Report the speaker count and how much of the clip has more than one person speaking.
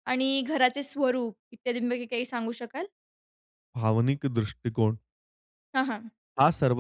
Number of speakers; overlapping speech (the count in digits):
2, no overlap